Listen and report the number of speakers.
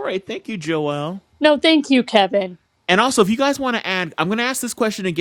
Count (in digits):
2